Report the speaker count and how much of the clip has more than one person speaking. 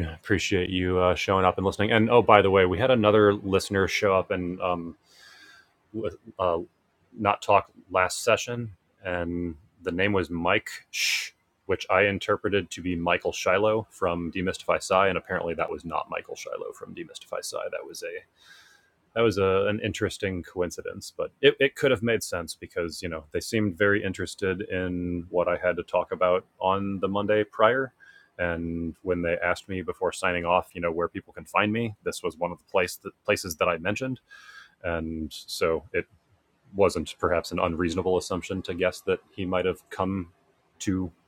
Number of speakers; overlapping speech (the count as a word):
one, no overlap